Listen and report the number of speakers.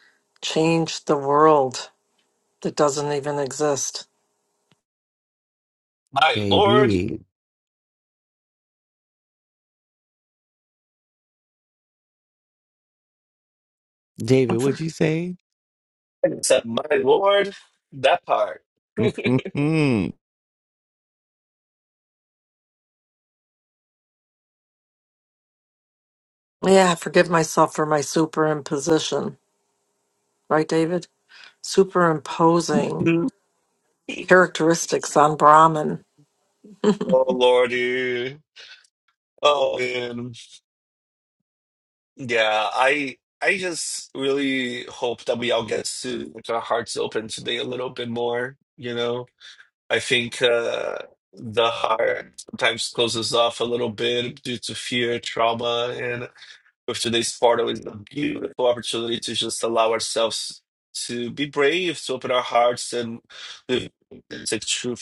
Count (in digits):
3